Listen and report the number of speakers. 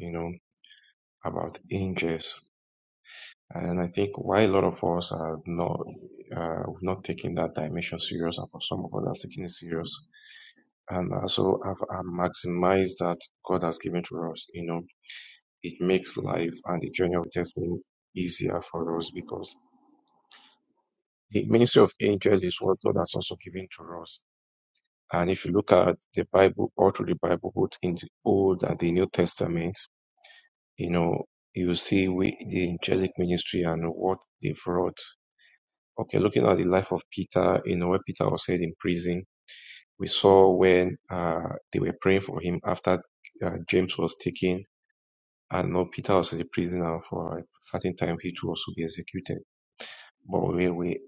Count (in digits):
1